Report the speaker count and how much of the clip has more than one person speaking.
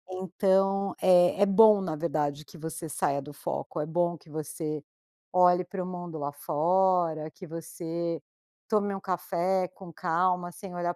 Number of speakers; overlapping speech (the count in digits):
1, no overlap